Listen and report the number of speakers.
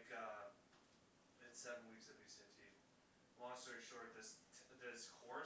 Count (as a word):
one